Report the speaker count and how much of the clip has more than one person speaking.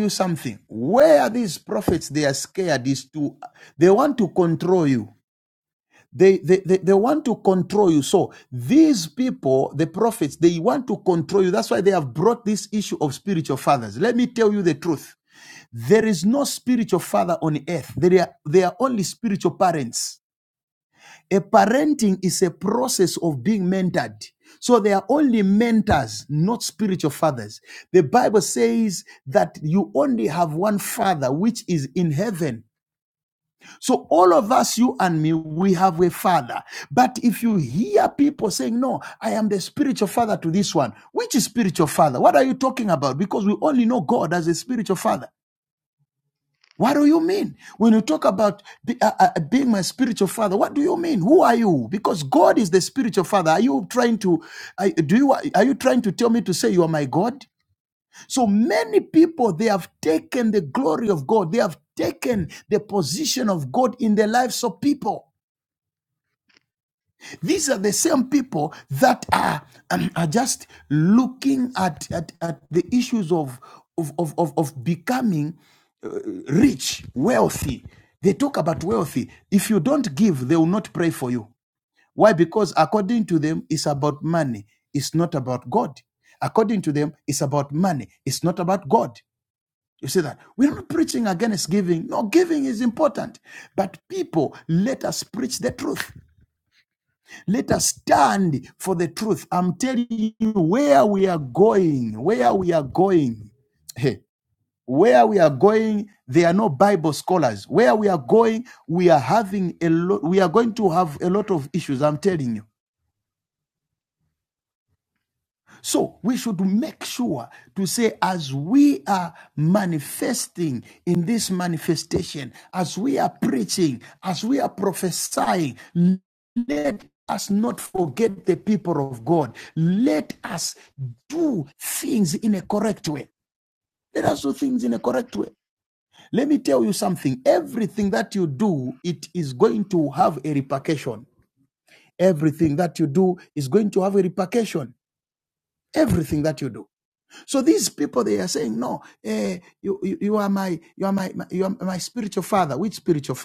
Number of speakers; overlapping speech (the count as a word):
one, no overlap